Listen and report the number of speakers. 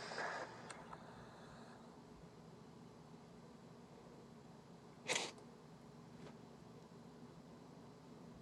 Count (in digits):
0